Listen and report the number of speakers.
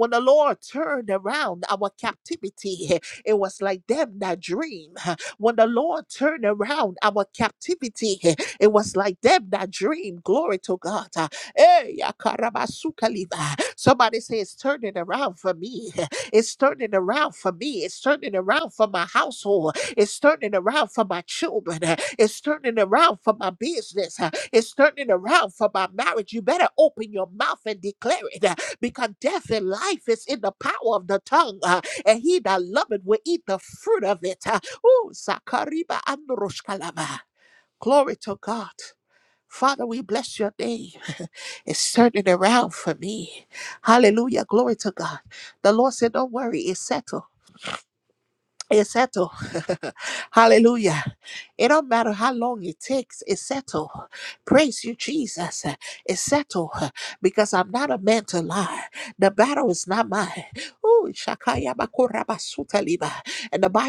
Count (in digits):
1